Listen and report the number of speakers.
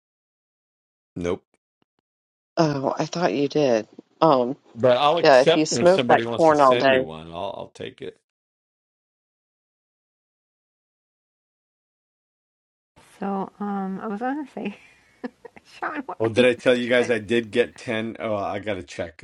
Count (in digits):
3